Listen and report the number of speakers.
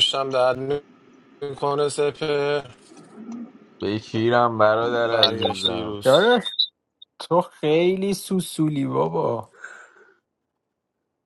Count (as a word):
three